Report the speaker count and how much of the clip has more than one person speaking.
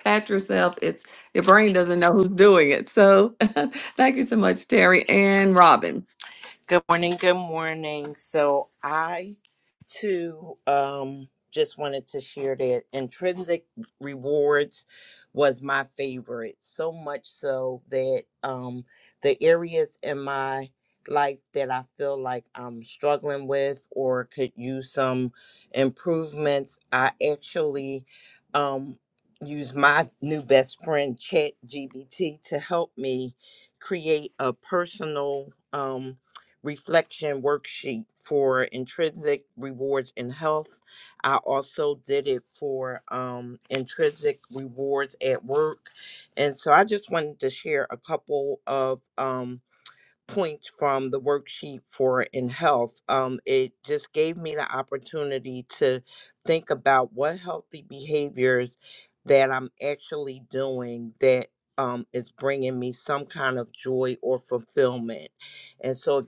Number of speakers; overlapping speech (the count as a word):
two, no overlap